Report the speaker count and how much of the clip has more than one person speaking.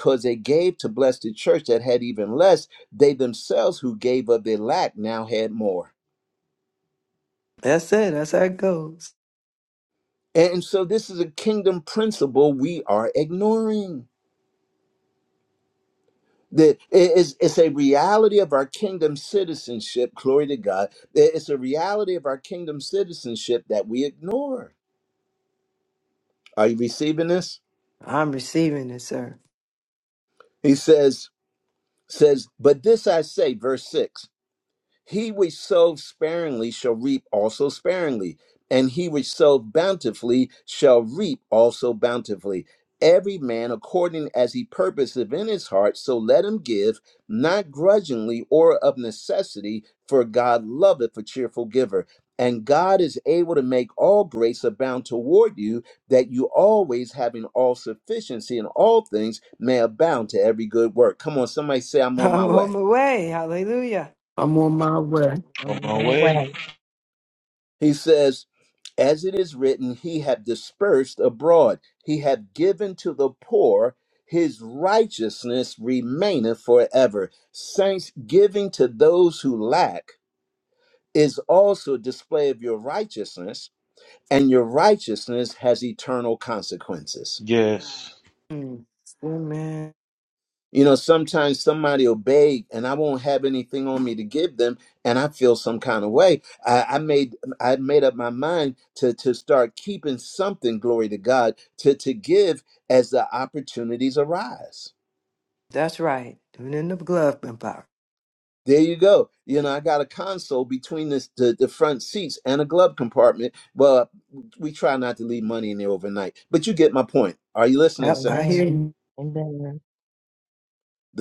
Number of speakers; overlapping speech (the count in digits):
5, about 2%